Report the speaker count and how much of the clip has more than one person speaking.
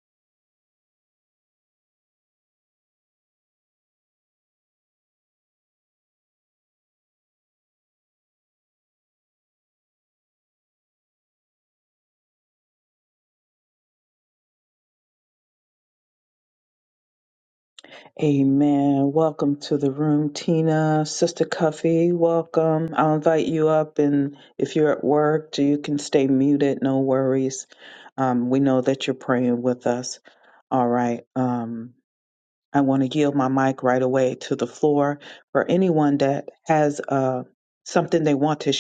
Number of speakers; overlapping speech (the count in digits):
1, no overlap